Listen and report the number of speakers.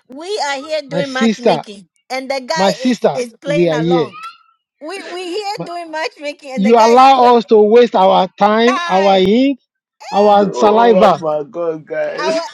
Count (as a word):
three